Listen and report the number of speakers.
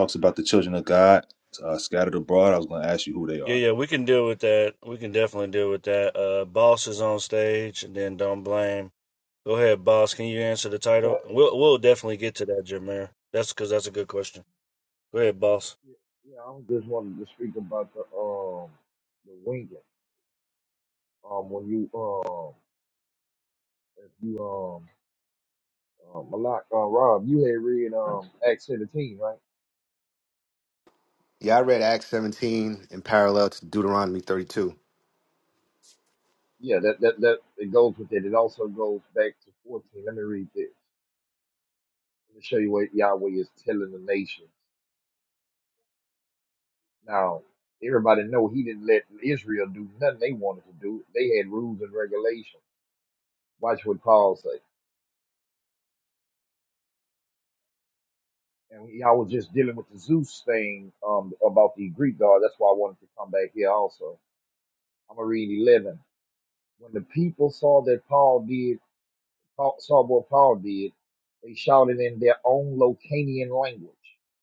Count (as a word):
four